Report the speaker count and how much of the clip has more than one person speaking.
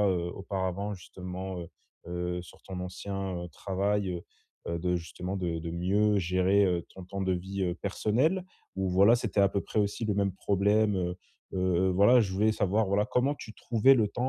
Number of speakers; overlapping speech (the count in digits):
1, no overlap